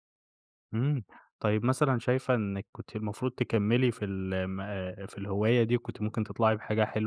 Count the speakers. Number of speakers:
1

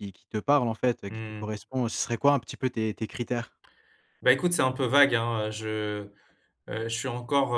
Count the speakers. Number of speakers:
2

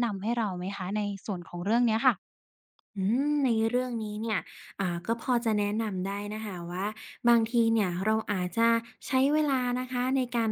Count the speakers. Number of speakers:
2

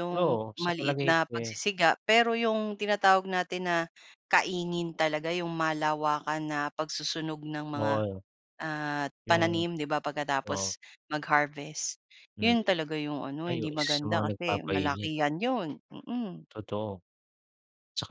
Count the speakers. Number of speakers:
2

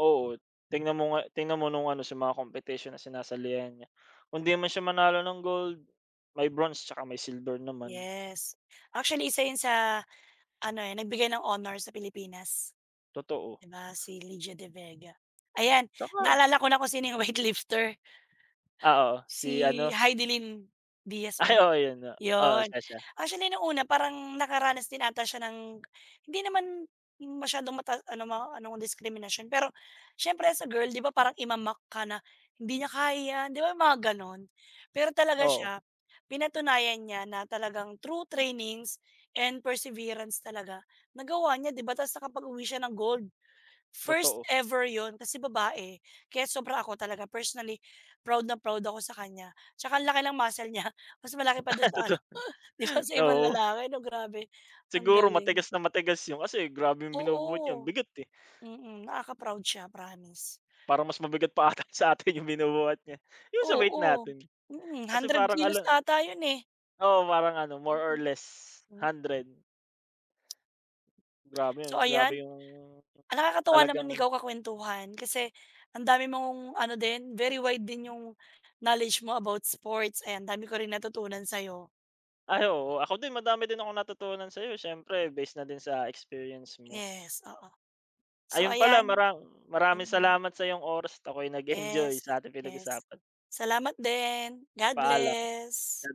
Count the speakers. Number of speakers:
2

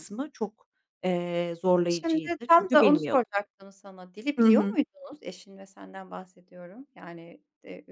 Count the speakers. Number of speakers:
2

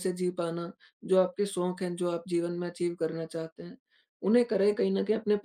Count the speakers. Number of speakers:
1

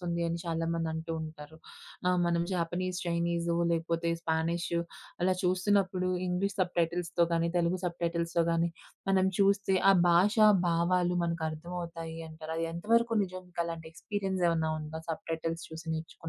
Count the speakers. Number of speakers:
1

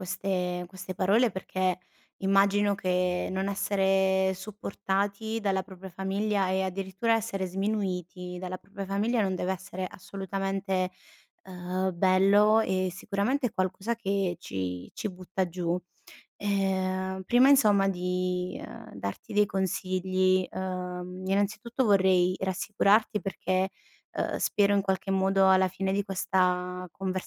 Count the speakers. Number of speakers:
1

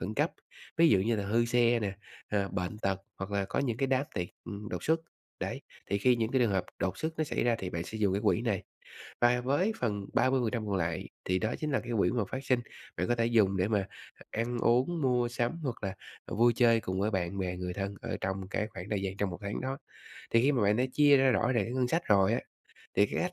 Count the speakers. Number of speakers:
1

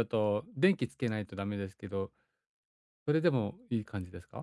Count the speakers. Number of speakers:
1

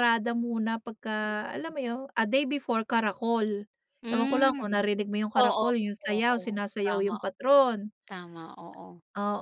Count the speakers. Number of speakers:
2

